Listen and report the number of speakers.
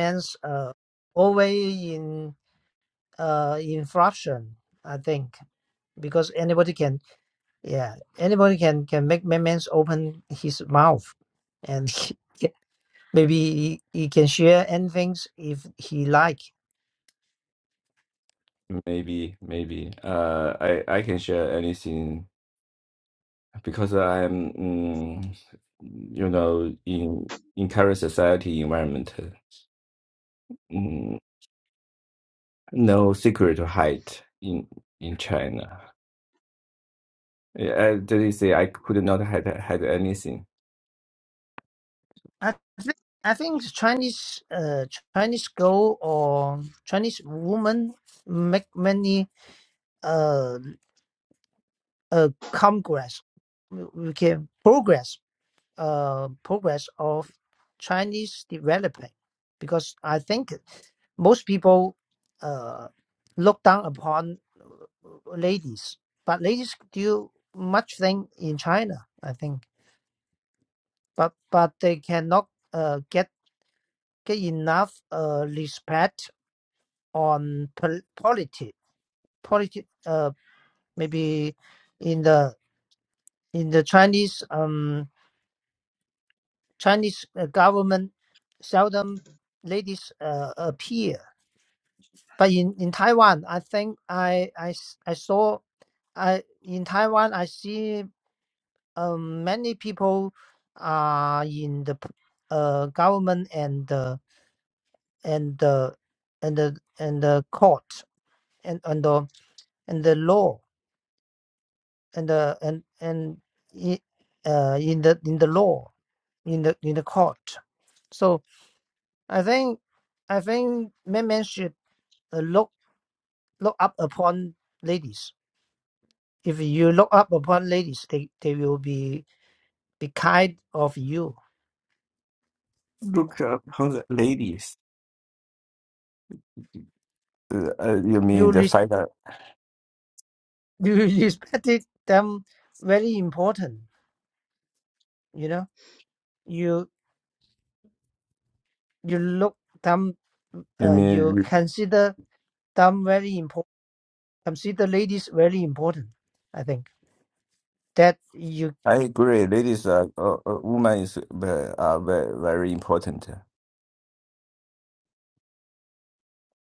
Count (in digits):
2